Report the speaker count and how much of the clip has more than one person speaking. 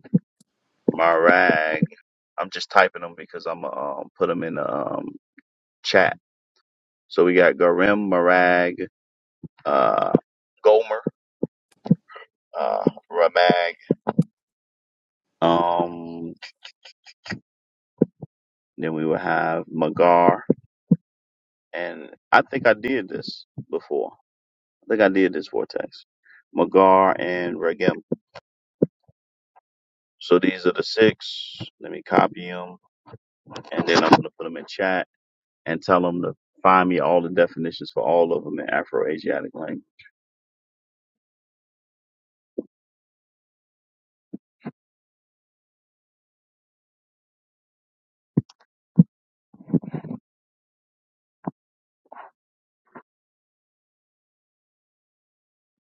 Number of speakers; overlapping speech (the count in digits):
1, no overlap